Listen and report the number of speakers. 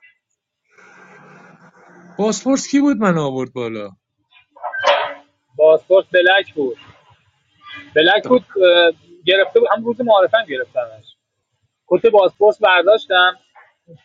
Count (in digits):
2